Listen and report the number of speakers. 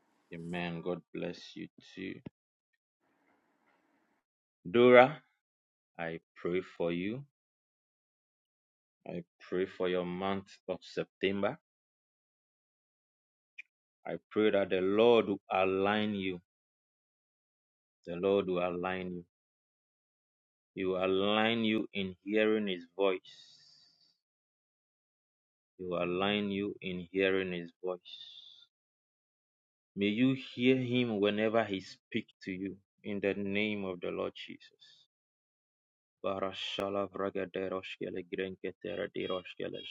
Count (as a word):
one